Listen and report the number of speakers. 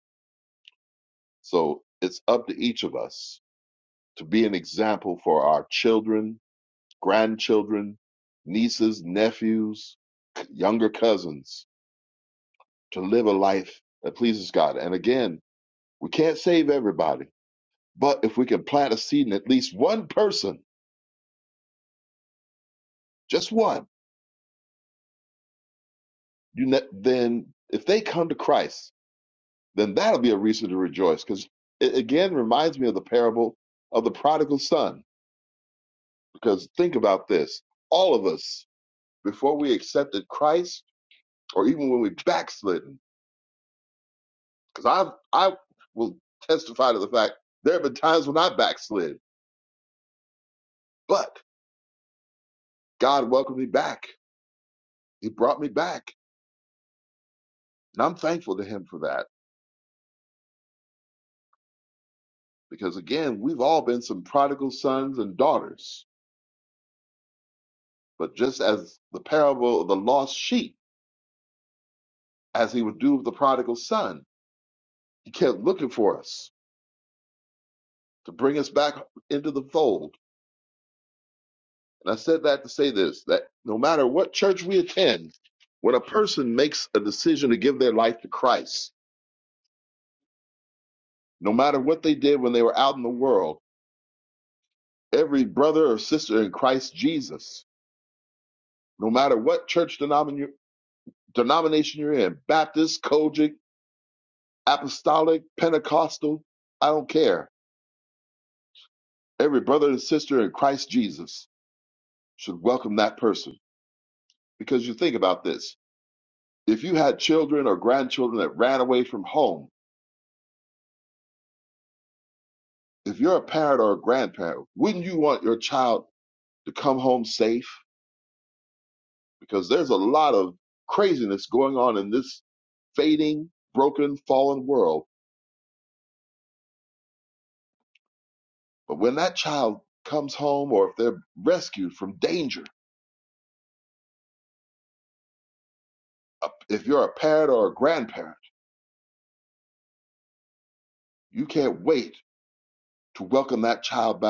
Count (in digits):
1